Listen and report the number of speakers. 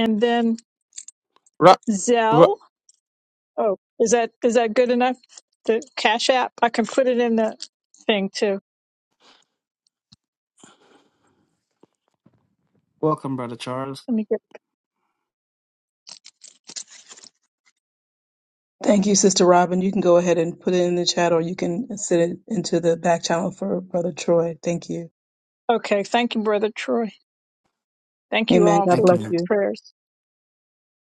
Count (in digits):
3